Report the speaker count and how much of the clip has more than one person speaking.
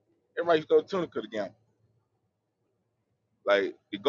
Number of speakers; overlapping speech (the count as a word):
one, no overlap